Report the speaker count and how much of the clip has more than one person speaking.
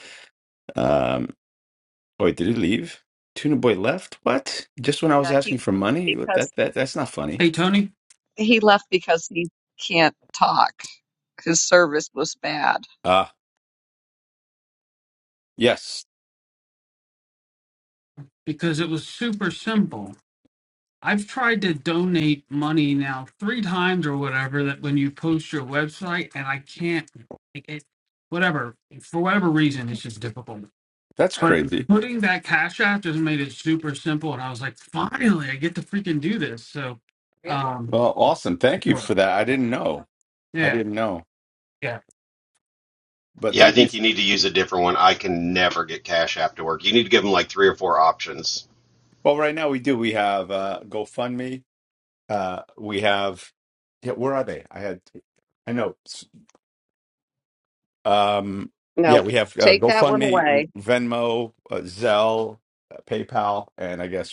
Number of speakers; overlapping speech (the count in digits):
4, about 5%